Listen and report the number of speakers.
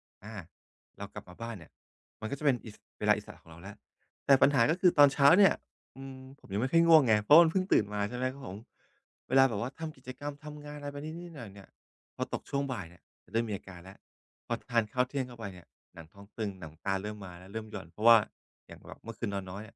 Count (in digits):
1